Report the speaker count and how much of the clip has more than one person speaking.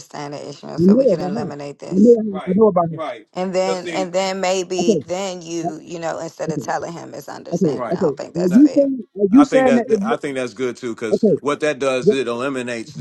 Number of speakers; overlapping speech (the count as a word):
three, about 36%